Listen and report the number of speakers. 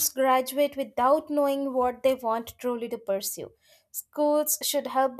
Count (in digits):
1